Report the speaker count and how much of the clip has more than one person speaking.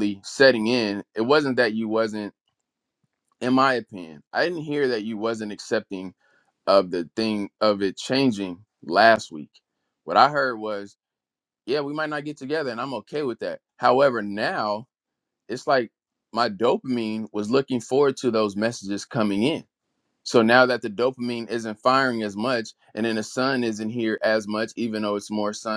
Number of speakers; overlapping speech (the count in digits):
1, no overlap